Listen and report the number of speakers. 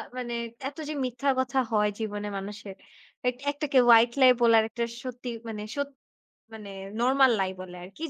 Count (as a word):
one